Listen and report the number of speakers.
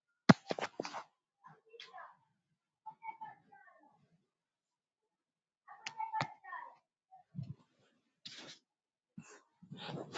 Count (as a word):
zero